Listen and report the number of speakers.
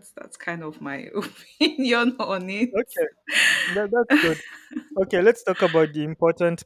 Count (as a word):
two